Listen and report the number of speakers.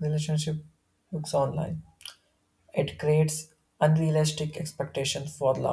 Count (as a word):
one